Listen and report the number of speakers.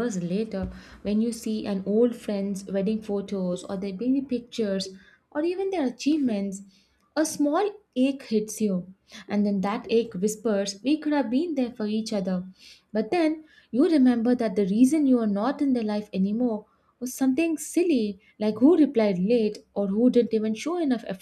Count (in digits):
1